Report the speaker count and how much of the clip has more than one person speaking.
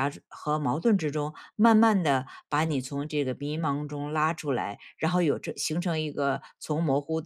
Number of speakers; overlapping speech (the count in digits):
1, no overlap